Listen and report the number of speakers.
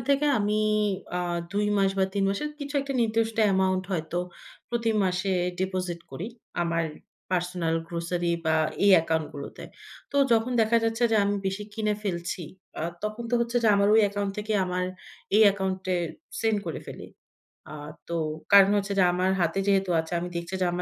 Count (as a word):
one